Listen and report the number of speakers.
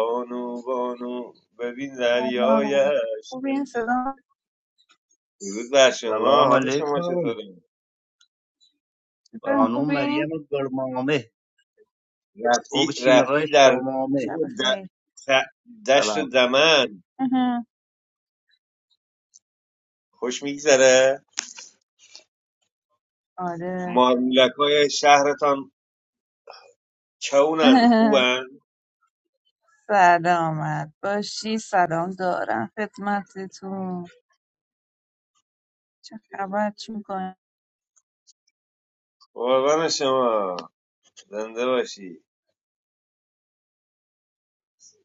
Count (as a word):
three